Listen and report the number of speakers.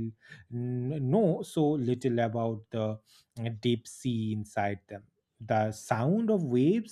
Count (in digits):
1